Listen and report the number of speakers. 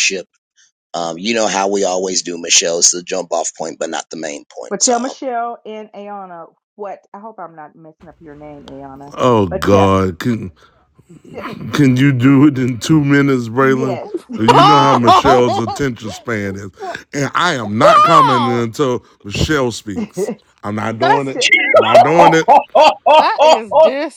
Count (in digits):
4